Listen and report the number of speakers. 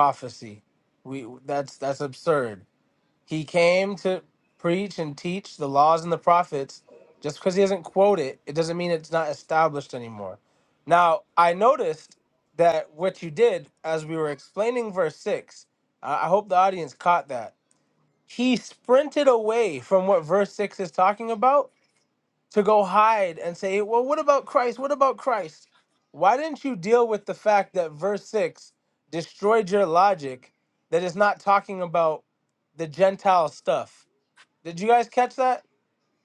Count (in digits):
1